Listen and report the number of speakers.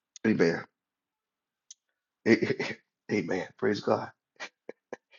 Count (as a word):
one